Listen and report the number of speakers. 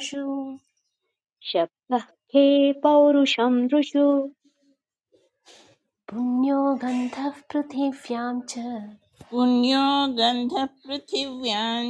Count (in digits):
3